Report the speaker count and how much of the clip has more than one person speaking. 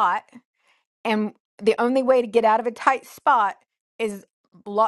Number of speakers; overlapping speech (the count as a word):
one, no overlap